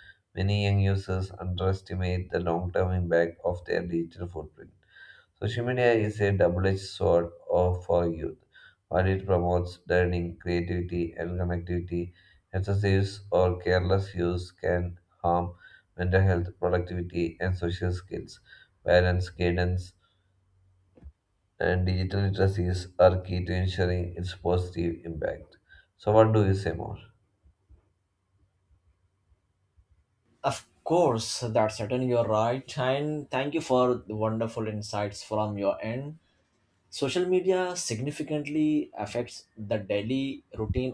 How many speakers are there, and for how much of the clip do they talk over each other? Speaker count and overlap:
2, no overlap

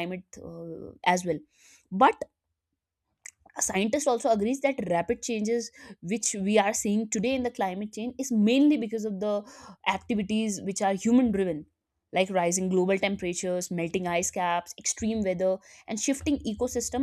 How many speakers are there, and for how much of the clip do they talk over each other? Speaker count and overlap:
1, no overlap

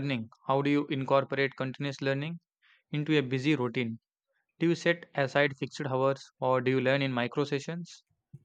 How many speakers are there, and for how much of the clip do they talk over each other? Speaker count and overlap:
1, no overlap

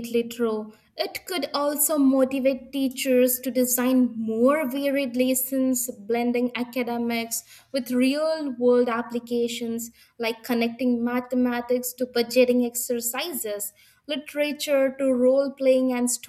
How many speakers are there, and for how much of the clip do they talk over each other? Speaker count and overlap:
1, no overlap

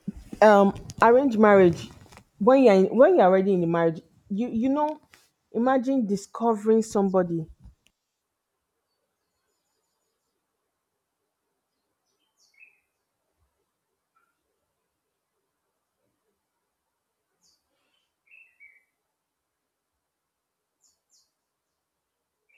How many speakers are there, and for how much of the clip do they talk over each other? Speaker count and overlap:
1, no overlap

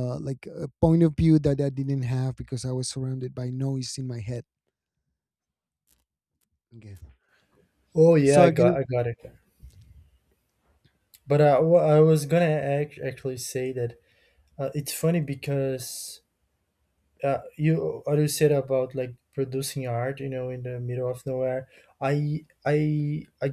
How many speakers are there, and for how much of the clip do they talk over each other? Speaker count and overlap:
2, about 2%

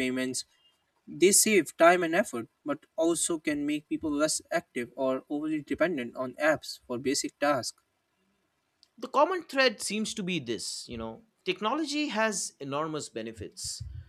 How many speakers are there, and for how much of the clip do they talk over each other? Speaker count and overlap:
2, no overlap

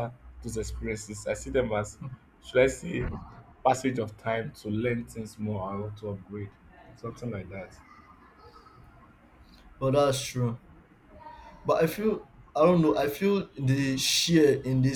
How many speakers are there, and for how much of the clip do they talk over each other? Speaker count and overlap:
2, no overlap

